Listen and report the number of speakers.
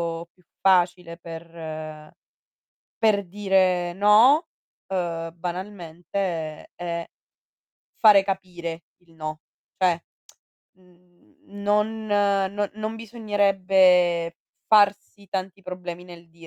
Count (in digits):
1